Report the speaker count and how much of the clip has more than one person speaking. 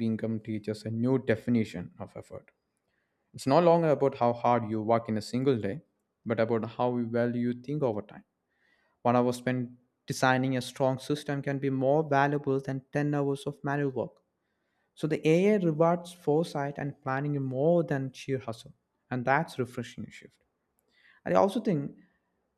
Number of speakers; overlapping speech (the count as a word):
one, no overlap